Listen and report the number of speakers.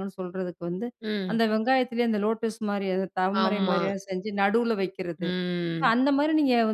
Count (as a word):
two